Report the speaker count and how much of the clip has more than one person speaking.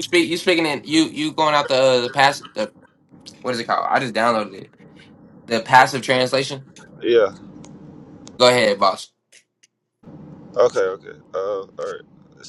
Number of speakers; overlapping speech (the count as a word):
two, no overlap